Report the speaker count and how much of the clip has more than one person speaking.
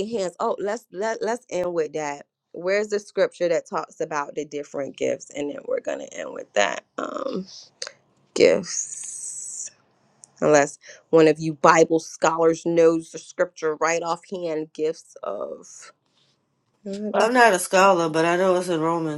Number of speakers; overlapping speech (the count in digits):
2, under 1%